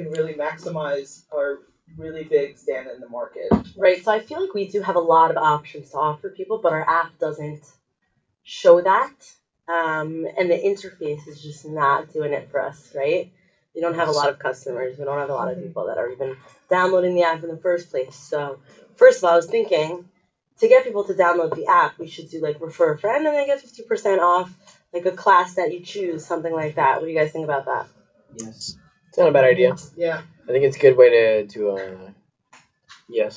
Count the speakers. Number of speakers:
4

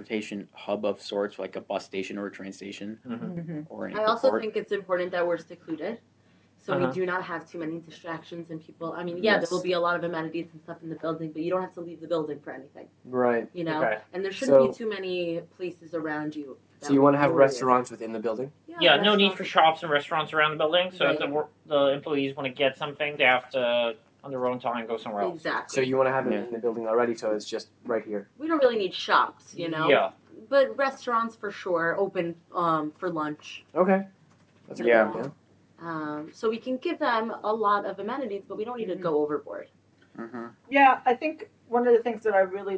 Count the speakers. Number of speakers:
5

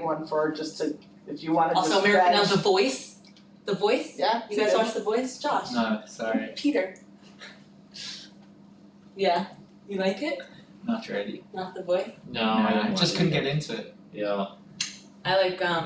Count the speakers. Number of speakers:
4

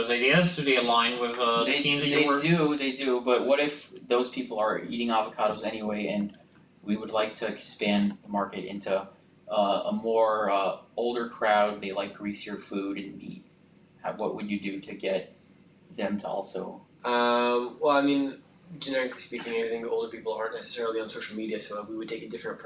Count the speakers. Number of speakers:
3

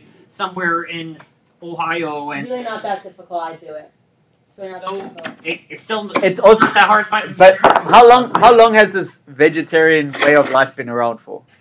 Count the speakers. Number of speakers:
3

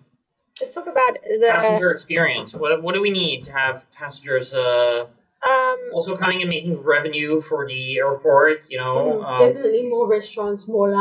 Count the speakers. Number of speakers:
3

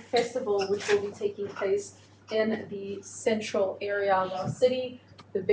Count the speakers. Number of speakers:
1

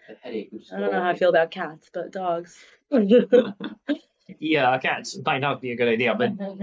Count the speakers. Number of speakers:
3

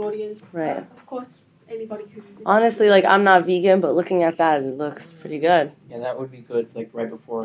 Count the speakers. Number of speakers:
3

